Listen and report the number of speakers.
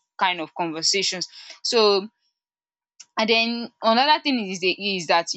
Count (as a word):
one